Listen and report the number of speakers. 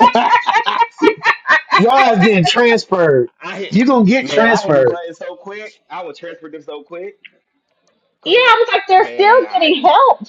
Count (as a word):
three